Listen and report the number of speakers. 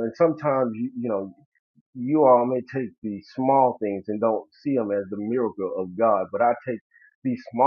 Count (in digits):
1